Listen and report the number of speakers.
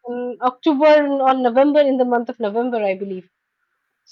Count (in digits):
1